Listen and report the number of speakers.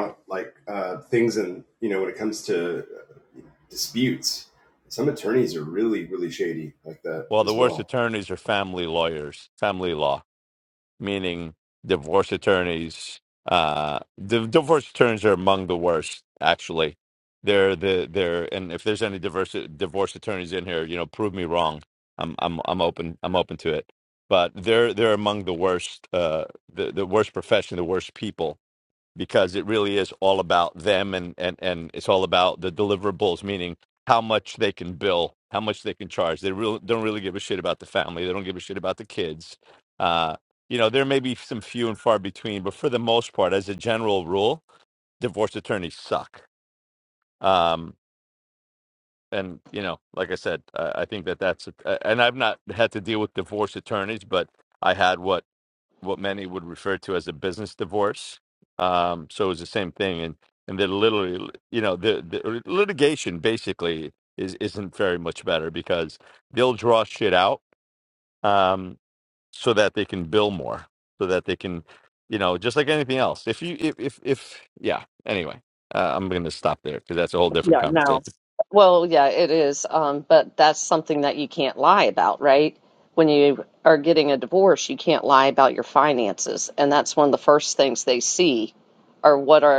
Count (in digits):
3